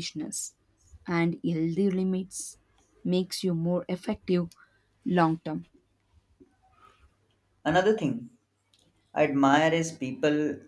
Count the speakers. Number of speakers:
2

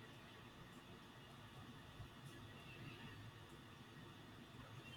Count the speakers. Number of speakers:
0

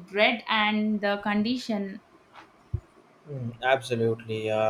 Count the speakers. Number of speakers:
2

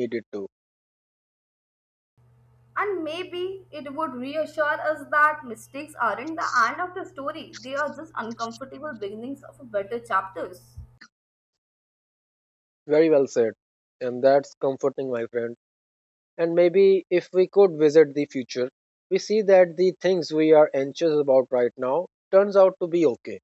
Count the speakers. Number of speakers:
2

